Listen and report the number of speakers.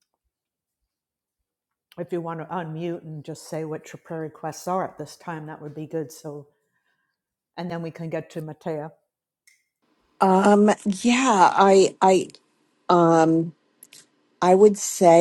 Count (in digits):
2